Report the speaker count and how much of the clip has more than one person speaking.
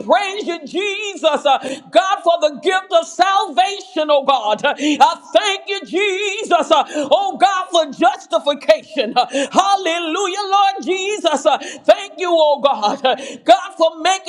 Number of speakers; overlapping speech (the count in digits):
1, no overlap